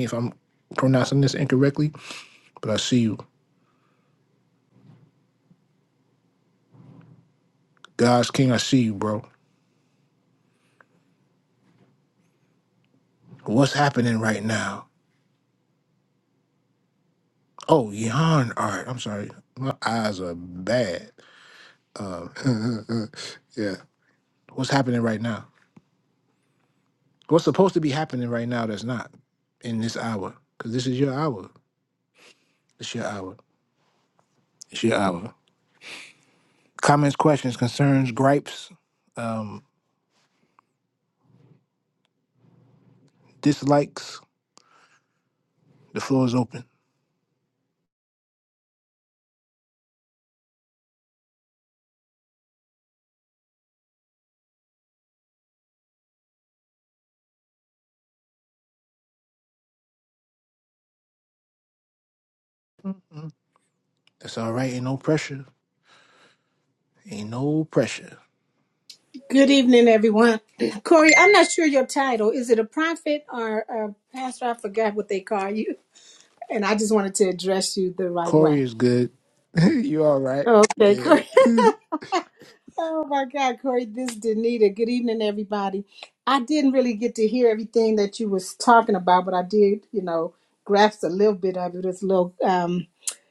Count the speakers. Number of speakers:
2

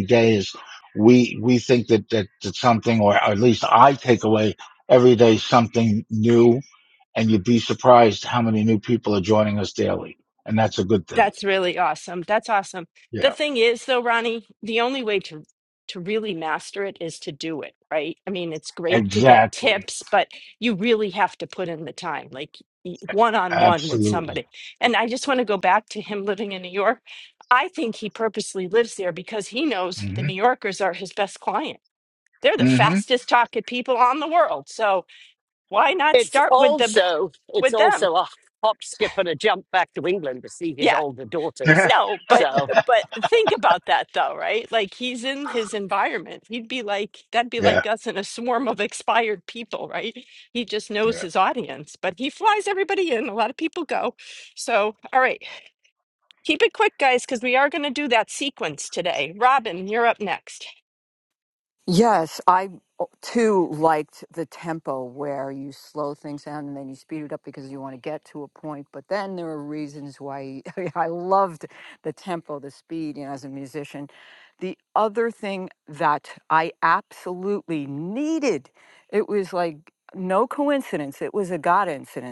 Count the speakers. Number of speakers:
4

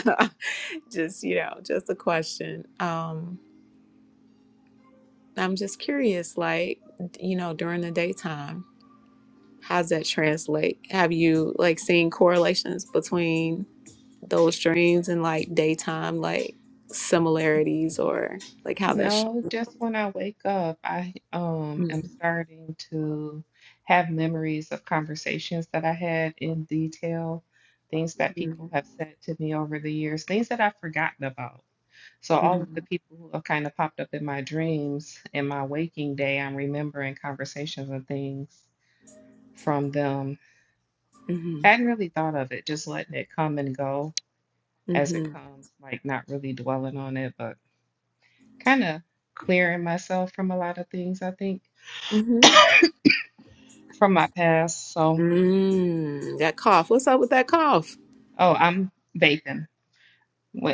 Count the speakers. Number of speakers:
2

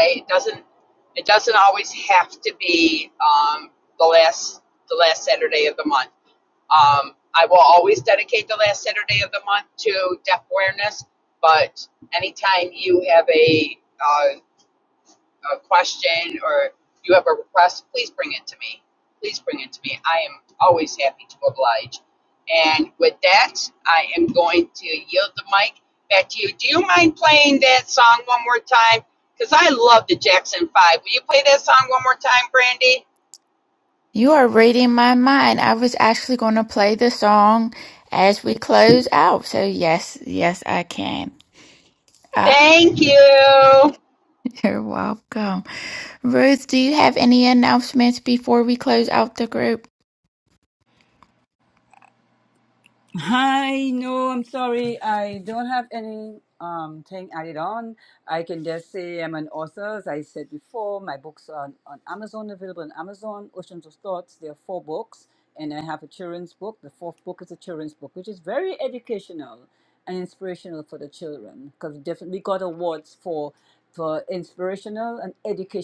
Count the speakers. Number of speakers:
3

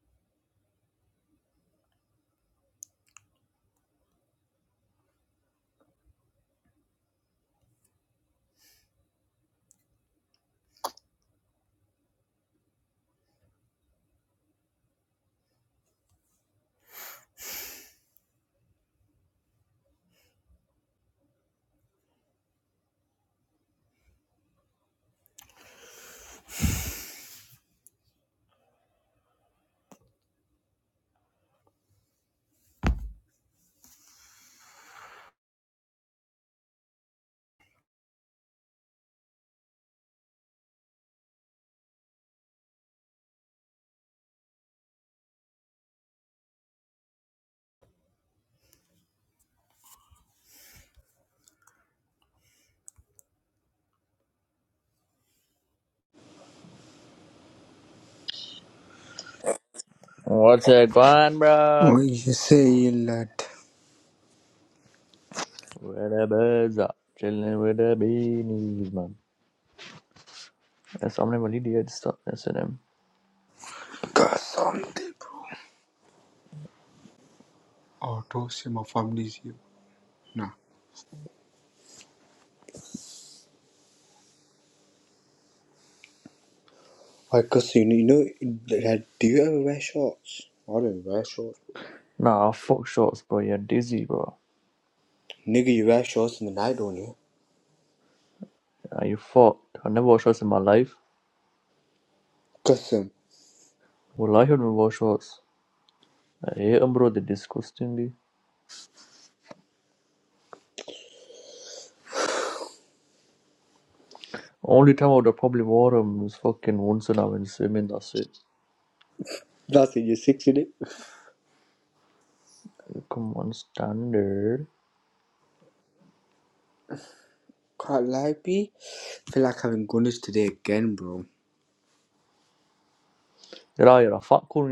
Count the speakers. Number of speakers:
2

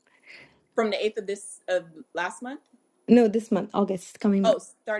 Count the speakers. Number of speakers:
2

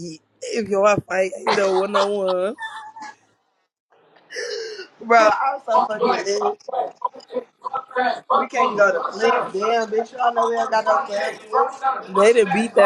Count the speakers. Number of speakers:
3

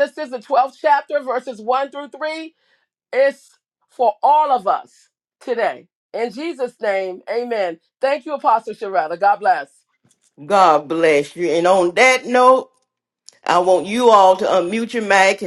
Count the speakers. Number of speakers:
2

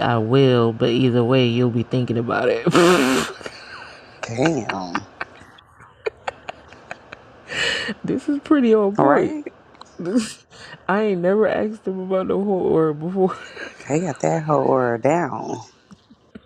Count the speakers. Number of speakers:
2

